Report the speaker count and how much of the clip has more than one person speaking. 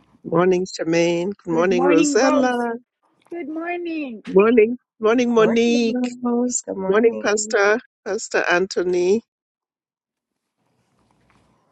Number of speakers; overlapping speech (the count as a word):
three, about 21%